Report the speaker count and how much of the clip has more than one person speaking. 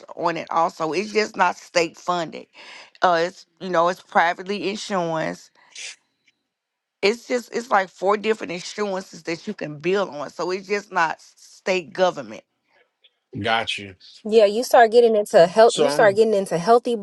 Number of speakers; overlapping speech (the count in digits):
3, about 3%